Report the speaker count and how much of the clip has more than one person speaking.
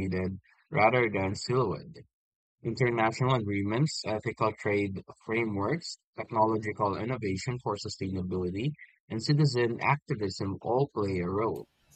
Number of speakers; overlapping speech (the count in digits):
1, no overlap